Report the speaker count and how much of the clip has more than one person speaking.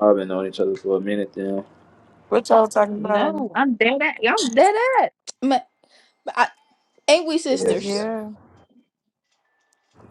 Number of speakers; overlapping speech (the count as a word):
three, about 6%